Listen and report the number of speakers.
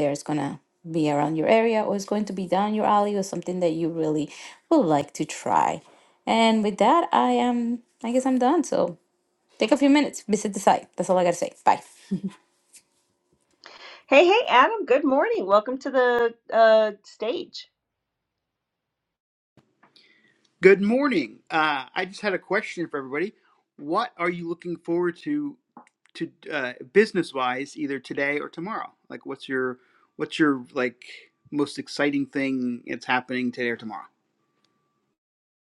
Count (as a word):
three